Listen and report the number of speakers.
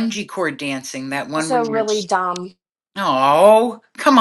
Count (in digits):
2